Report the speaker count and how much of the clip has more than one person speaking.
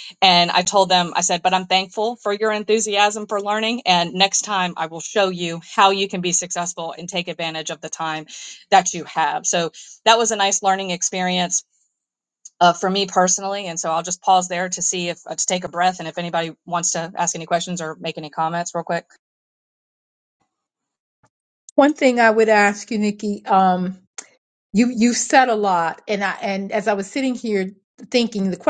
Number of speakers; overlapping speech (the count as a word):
two, no overlap